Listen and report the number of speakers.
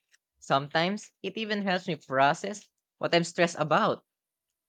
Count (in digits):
1